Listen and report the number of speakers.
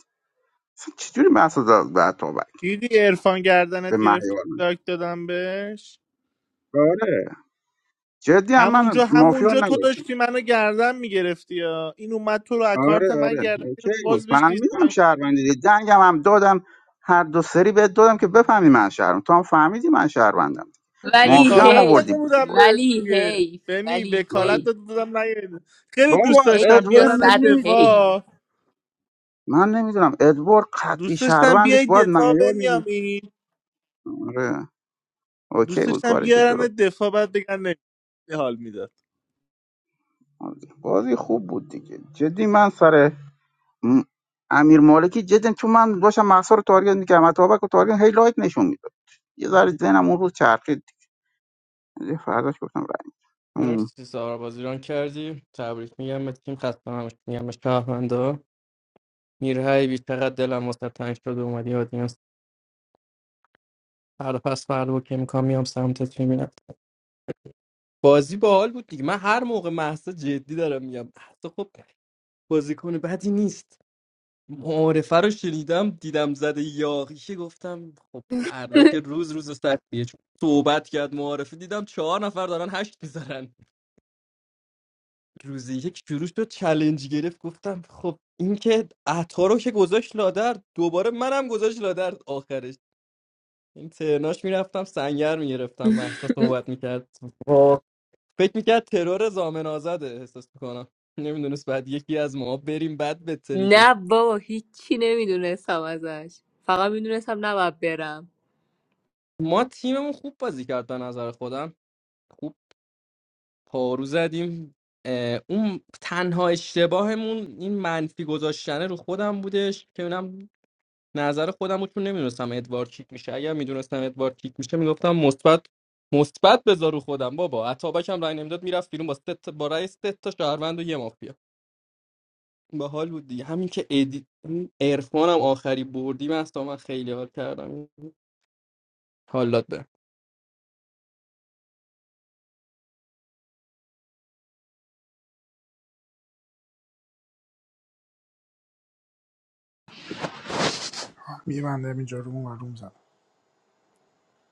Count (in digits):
5